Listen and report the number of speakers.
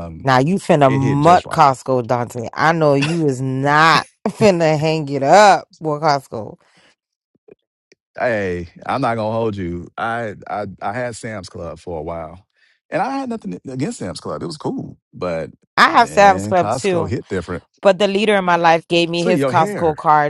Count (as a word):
two